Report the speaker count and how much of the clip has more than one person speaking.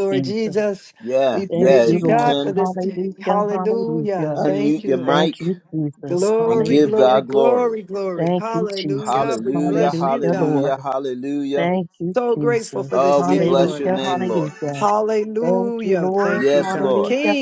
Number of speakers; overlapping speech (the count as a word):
three, about 76%